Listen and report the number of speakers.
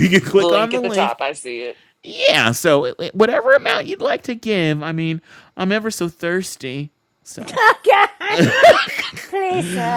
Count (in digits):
3